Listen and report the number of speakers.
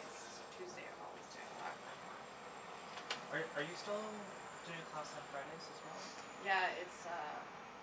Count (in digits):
2